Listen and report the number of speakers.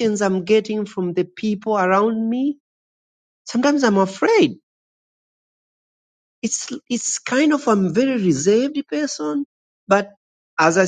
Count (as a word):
one